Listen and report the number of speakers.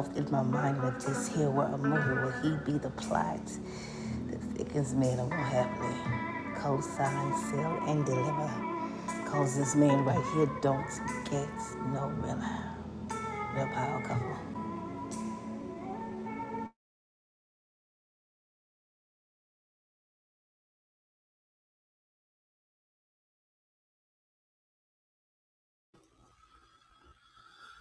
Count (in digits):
1